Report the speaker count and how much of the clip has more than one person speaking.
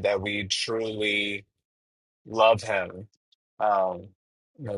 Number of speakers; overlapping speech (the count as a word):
one, no overlap